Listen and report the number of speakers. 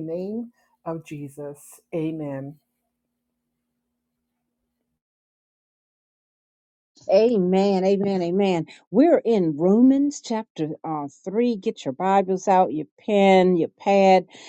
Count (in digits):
2